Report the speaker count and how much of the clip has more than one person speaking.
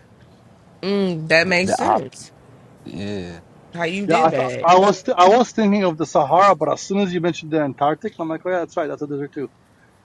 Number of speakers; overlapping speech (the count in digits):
3, about 12%